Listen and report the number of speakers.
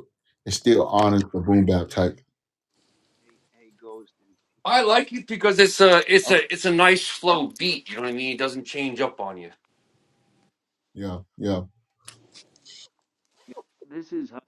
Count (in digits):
3